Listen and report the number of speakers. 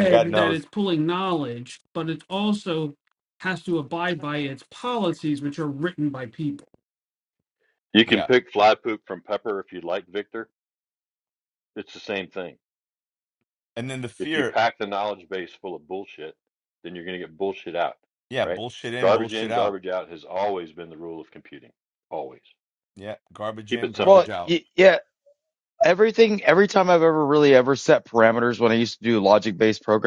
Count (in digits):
4